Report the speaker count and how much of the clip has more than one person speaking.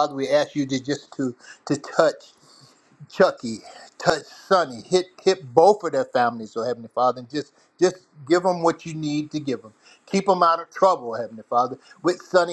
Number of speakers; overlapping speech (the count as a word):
one, no overlap